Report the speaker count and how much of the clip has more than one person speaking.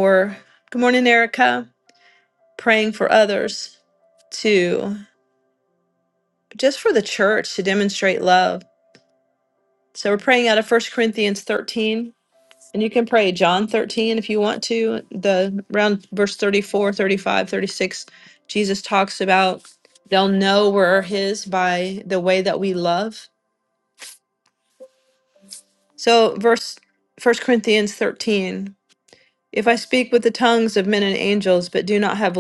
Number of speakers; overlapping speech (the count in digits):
1, no overlap